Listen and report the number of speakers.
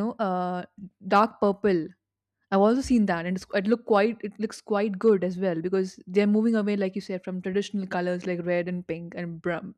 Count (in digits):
1